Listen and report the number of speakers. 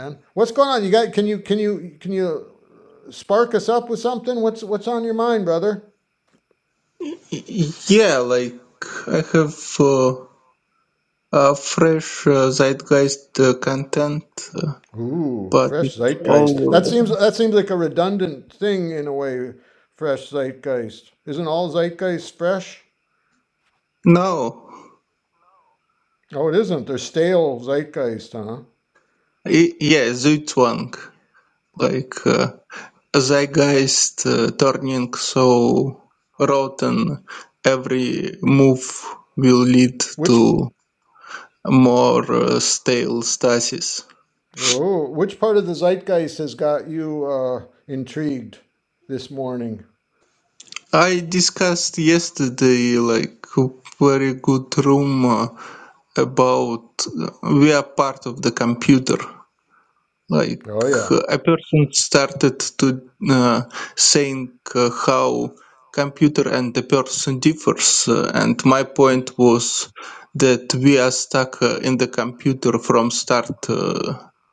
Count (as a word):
two